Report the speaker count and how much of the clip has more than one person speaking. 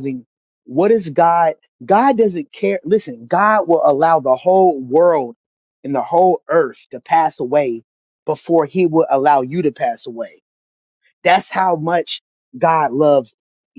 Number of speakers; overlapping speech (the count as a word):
one, no overlap